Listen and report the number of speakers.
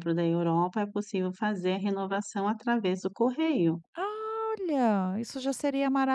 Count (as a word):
two